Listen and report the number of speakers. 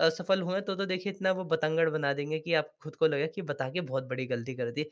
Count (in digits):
1